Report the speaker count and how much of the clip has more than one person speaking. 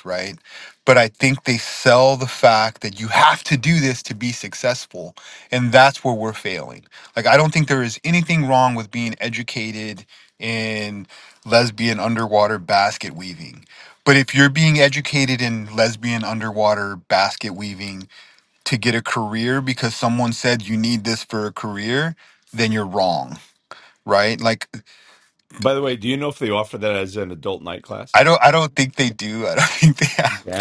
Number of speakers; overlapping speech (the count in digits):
2, about 1%